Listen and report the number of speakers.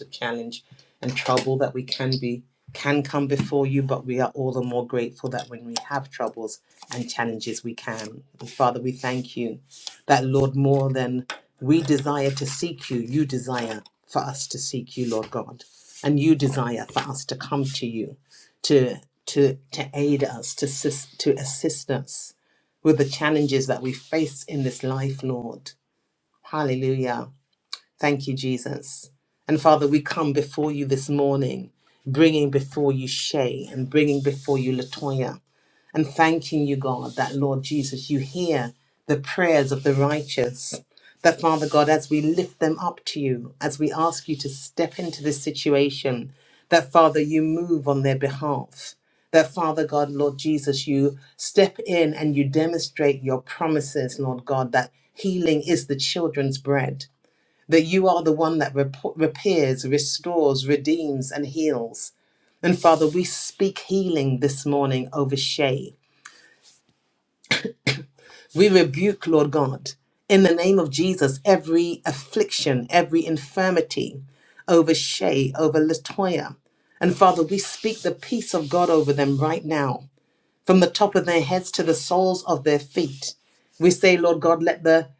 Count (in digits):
1